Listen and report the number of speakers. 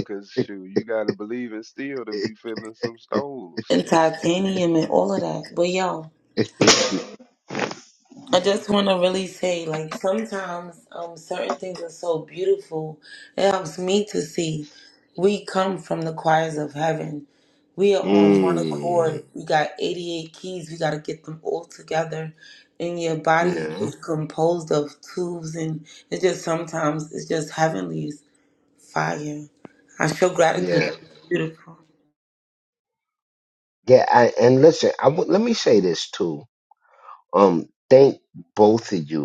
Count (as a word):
three